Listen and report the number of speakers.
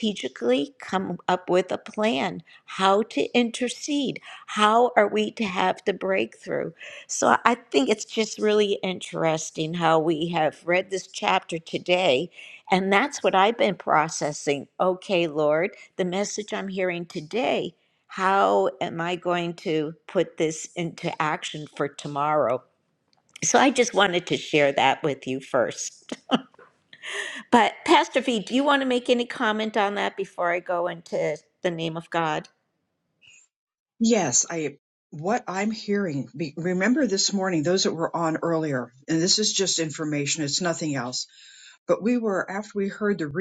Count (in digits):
2